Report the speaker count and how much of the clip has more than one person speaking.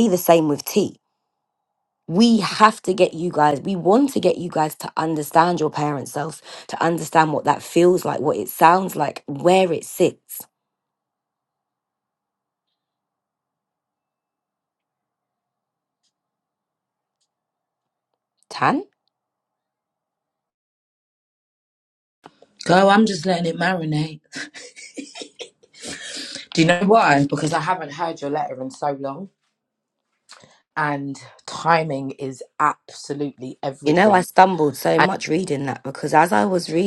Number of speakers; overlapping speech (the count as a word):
two, about 1%